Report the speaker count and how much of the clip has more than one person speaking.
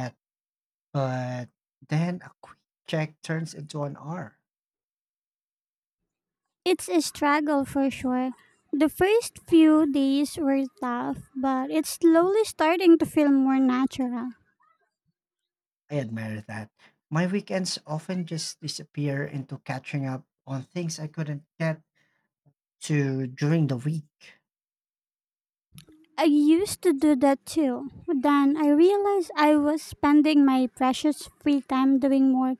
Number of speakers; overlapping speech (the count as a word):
two, no overlap